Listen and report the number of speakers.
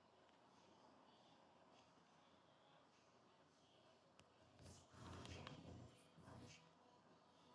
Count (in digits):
0